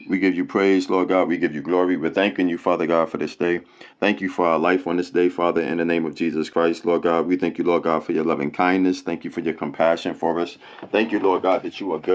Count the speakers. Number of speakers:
1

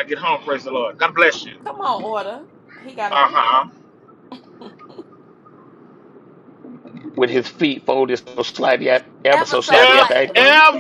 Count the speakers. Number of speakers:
3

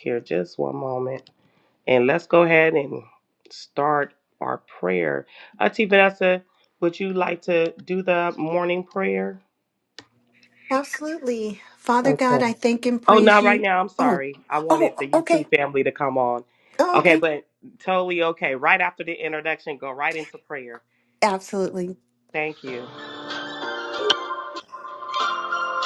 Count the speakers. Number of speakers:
2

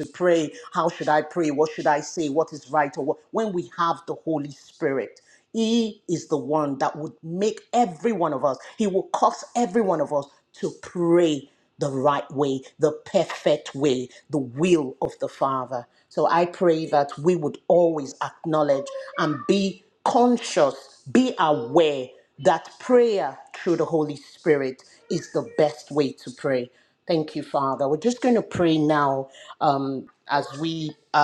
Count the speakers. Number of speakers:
1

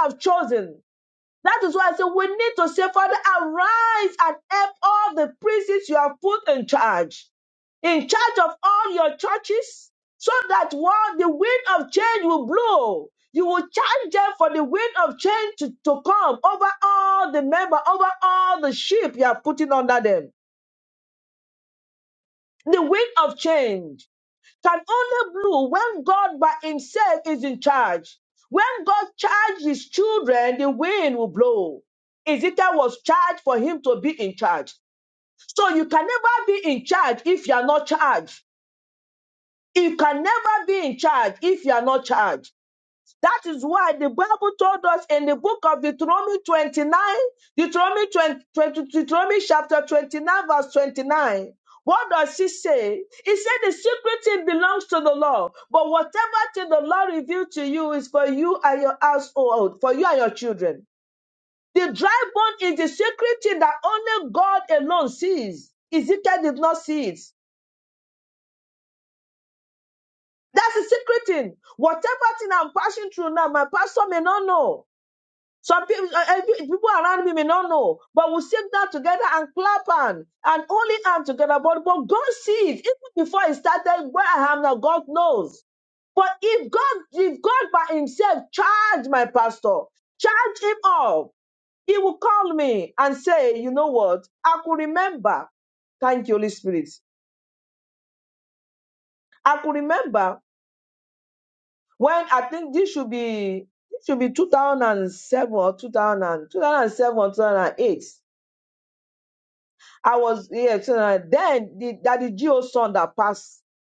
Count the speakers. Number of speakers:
1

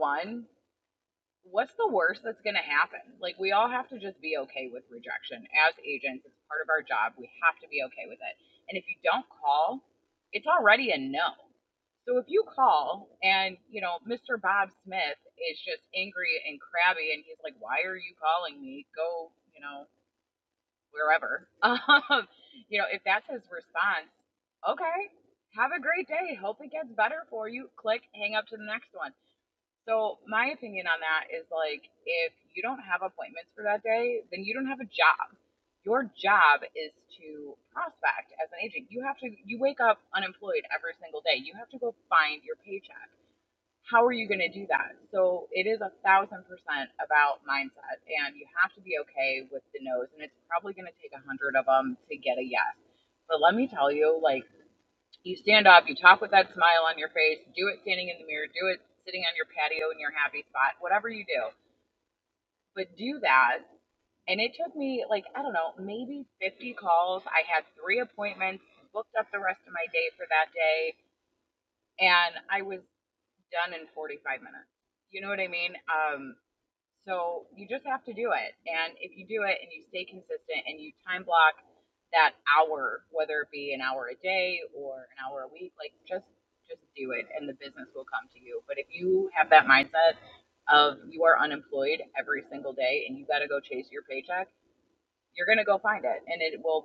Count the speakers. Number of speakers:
1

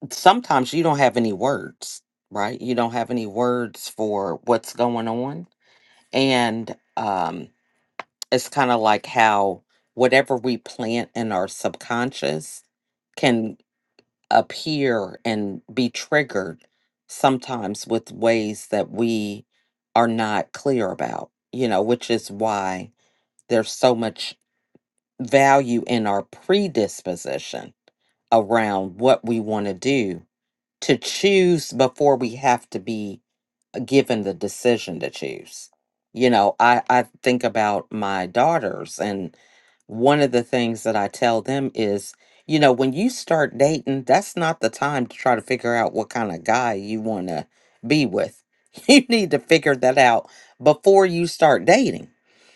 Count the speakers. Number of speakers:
1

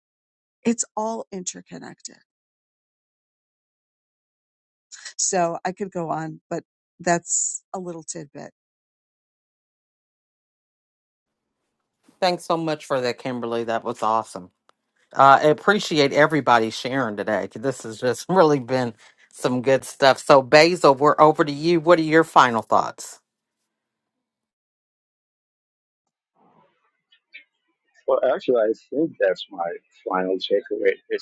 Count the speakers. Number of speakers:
3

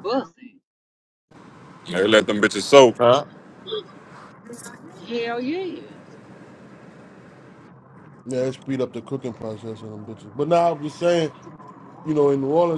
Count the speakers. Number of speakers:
3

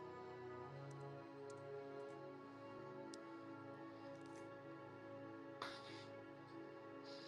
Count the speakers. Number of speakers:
0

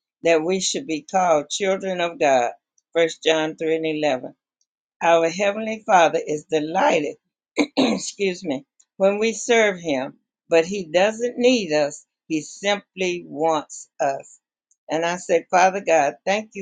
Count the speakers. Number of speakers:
1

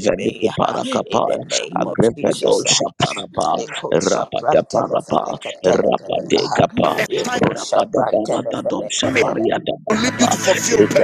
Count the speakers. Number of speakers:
3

